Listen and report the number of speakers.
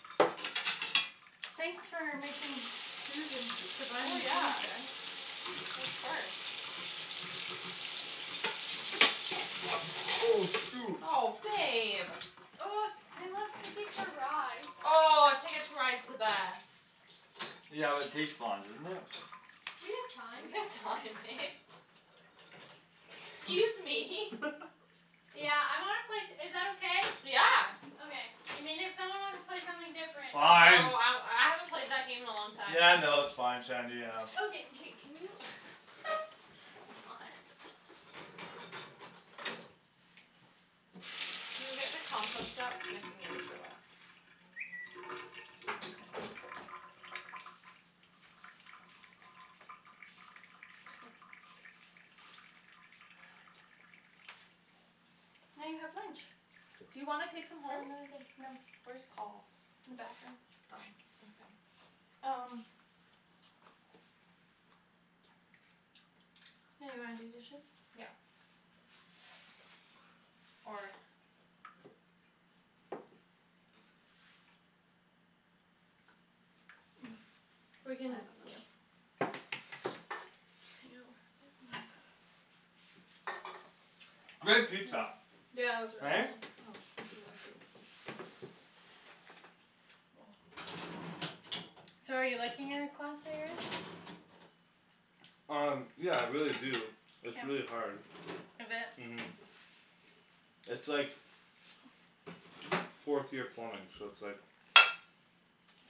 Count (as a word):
three